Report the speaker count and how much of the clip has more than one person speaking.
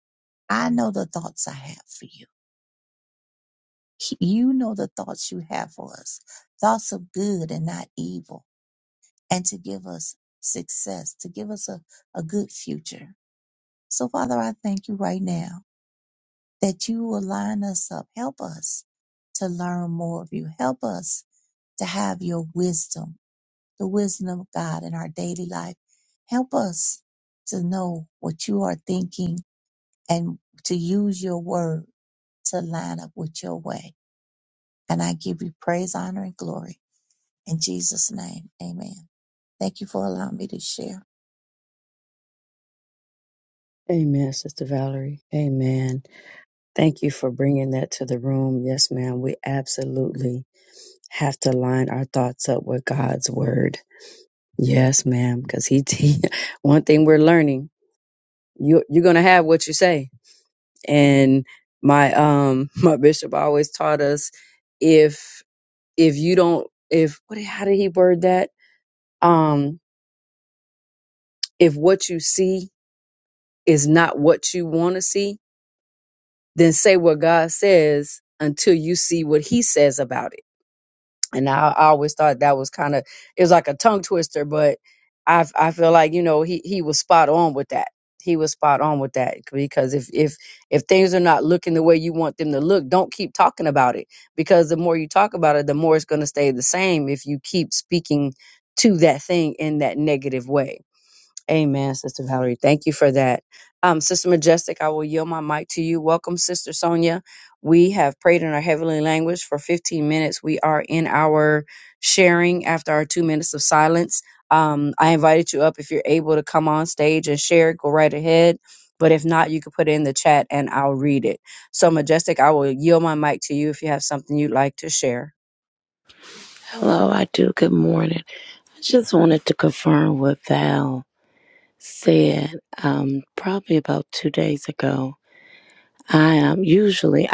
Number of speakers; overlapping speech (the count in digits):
3, no overlap